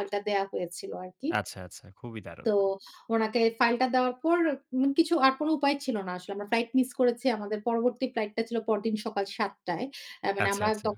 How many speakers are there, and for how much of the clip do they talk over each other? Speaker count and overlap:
2, about 5%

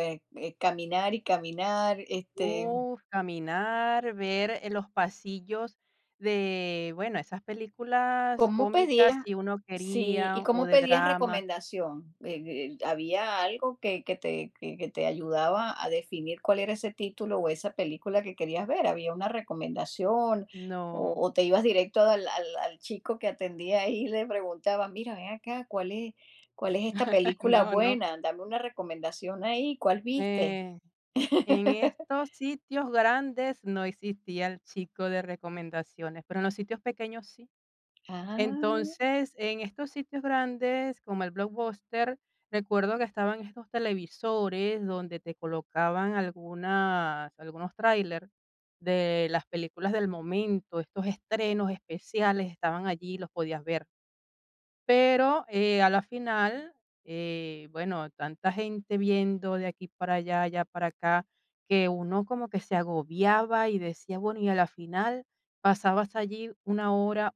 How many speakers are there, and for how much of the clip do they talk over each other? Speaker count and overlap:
2, about 7%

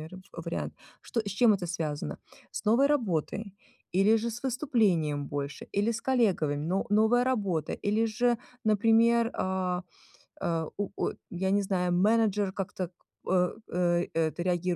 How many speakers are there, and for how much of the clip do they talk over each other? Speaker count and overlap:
1, no overlap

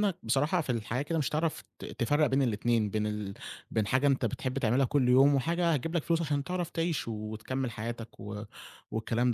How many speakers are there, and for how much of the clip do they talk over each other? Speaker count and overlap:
1, no overlap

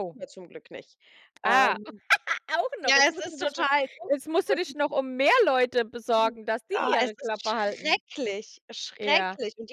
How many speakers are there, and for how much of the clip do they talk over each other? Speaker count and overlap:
2, about 34%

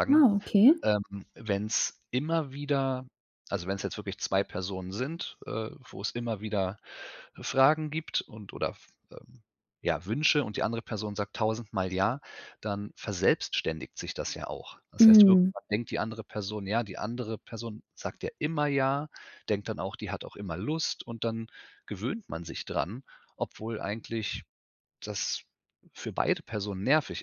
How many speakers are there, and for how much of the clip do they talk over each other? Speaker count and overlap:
2, about 2%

